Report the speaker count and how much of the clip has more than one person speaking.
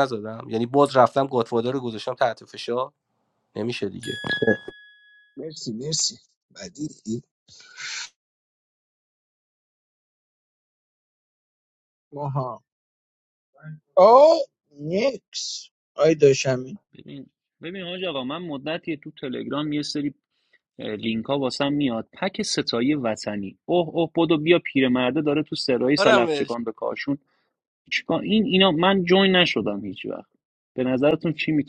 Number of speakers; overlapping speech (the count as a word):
three, about 2%